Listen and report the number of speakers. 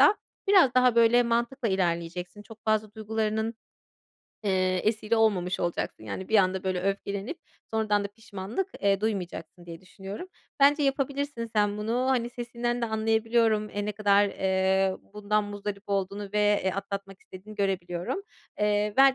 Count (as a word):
one